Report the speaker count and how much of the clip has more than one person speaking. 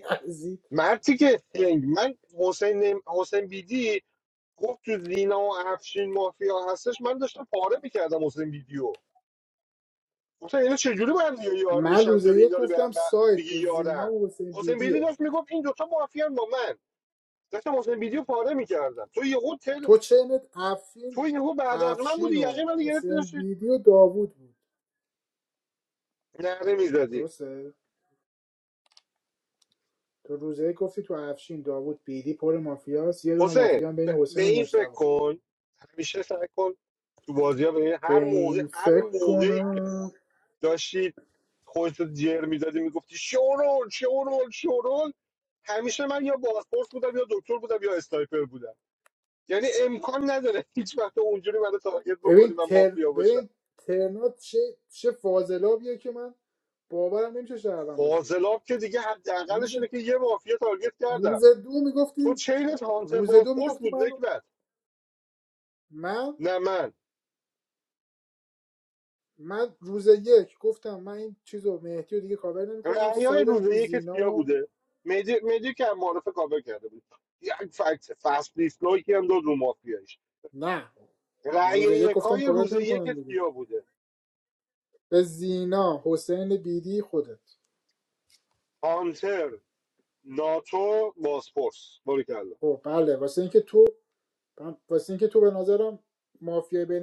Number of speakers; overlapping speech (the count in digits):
2, about 15%